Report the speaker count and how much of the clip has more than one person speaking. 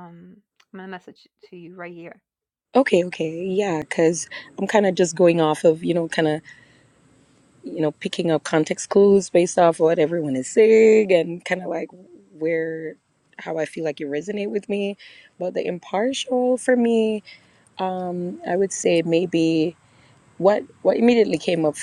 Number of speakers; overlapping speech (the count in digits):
2, no overlap